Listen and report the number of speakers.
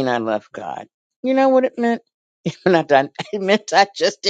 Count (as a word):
one